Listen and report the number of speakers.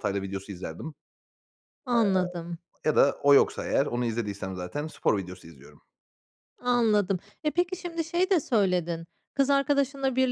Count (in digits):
2